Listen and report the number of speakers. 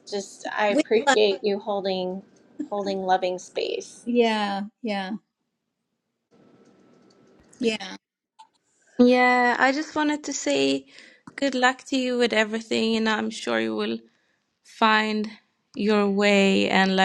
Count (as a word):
three